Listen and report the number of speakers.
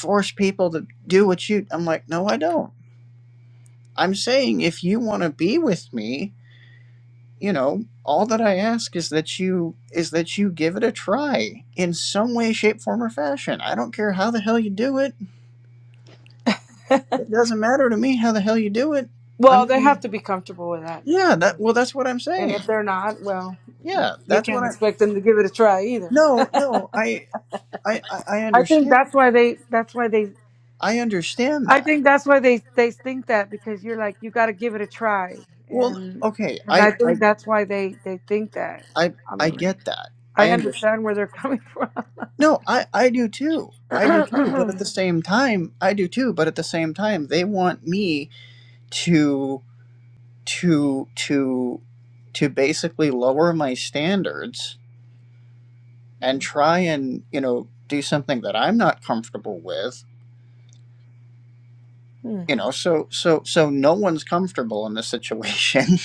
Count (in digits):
2